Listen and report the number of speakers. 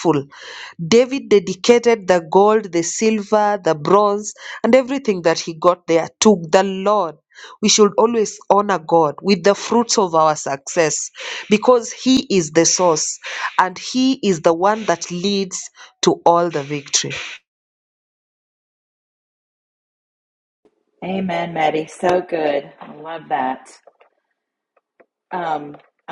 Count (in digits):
2